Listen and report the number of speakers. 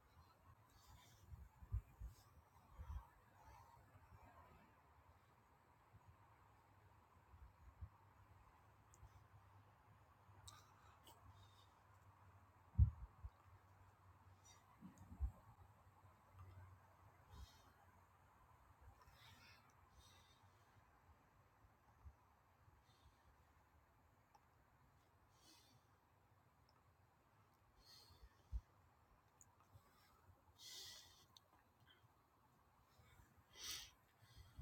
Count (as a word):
zero